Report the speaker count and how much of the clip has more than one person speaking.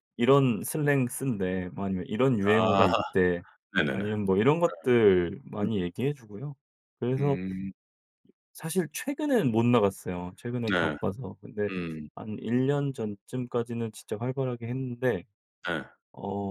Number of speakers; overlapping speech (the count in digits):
2, about 9%